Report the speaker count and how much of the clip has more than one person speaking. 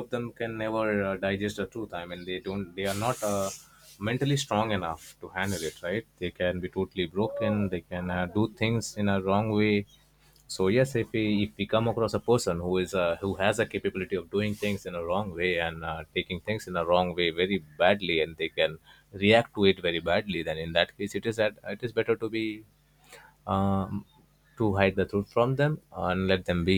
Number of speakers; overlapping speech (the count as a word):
one, no overlap